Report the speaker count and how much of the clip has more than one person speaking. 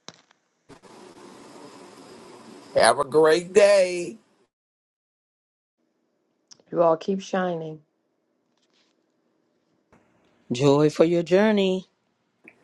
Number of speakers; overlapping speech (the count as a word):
three, no overlap